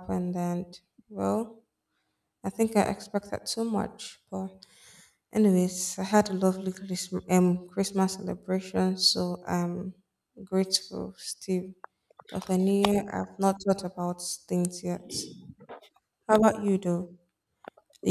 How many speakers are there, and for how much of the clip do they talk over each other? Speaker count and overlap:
one, no overlap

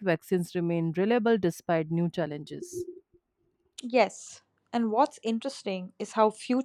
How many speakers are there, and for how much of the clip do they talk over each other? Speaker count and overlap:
two, no overlap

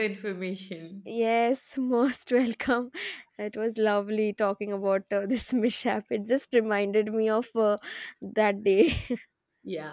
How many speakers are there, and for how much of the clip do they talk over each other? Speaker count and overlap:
two, no overlap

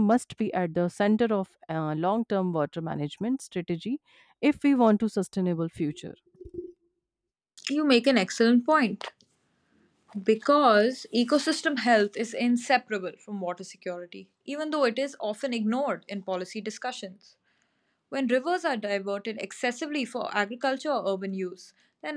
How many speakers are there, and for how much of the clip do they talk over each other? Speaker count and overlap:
two, no overlap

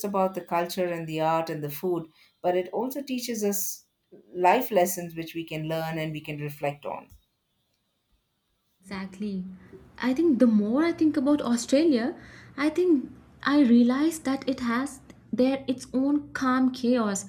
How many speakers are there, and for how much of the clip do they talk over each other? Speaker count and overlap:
two, no overlap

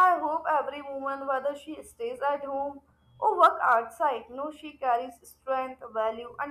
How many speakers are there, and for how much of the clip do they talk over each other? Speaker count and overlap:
one, no overlap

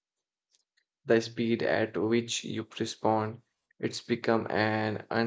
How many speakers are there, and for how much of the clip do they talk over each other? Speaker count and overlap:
one, no overlap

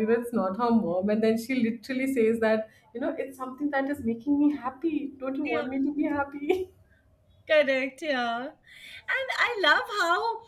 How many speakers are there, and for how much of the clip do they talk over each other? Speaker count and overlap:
two, about 2%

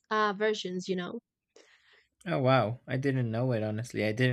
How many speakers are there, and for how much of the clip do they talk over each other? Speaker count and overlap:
two, no overlap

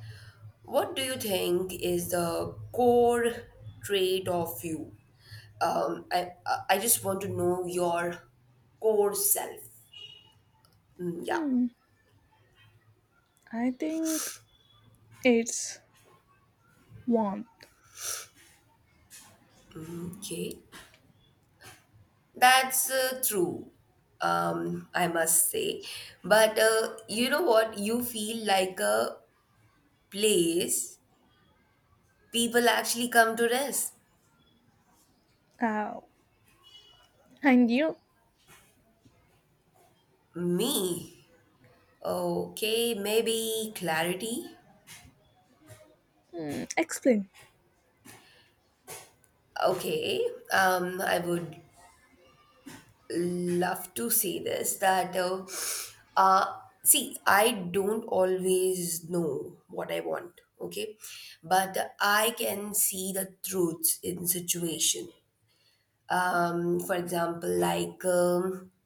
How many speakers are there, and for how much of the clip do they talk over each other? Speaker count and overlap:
two, under 1%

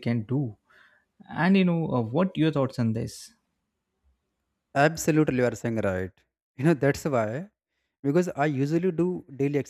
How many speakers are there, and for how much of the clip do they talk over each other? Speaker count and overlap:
two, no overlap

